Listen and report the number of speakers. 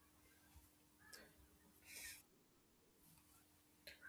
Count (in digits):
0